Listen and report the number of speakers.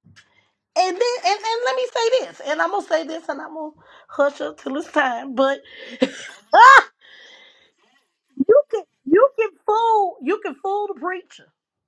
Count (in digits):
1